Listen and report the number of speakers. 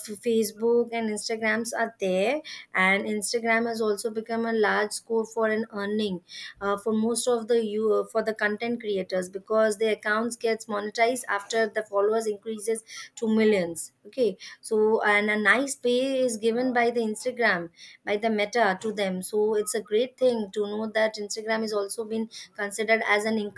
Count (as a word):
one